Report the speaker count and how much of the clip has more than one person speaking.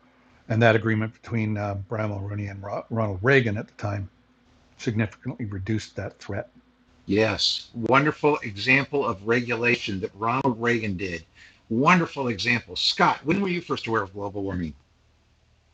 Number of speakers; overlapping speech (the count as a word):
two, no overlap